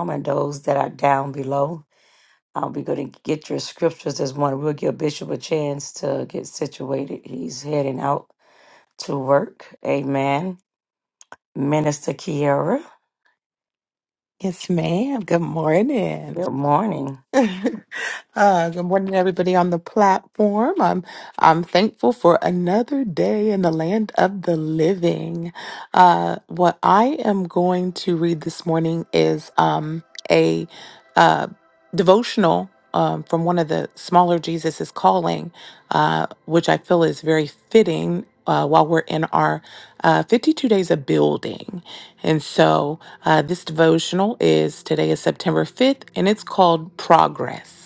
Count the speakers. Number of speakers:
two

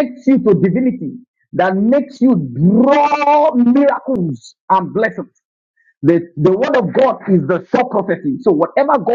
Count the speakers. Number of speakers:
one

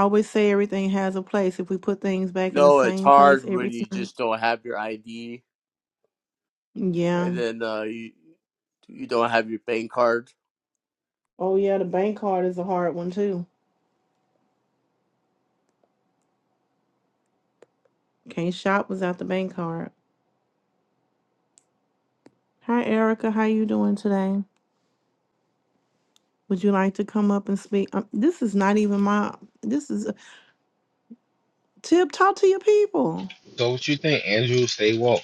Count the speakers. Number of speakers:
three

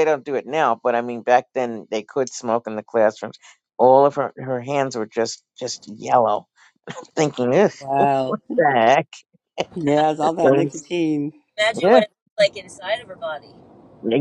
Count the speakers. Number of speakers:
three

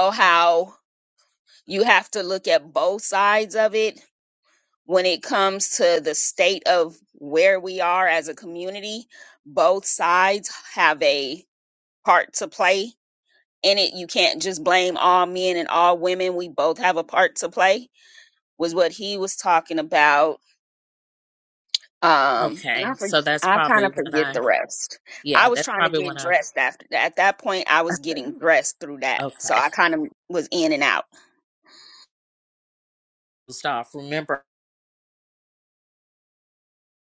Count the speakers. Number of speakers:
two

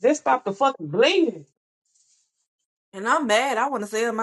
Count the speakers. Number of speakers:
two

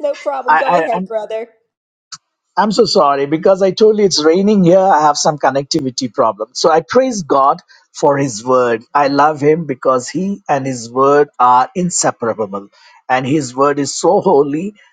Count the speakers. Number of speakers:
two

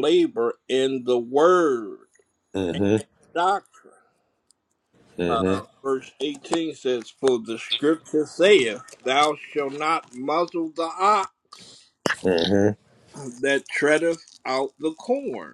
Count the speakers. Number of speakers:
two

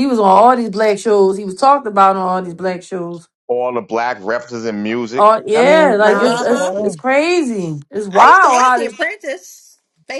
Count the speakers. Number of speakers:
three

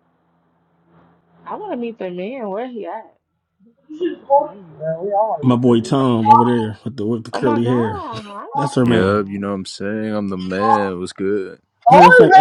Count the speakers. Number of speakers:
four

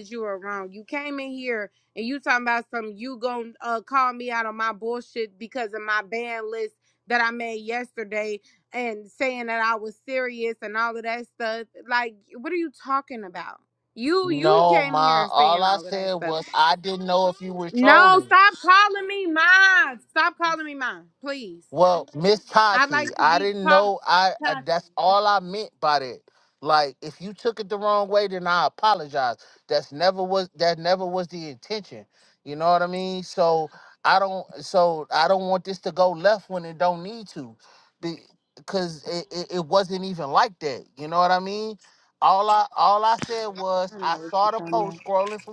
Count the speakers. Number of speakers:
two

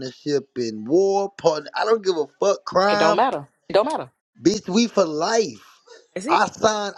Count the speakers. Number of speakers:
two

